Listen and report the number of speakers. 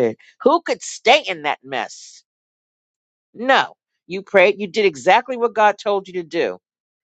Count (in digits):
1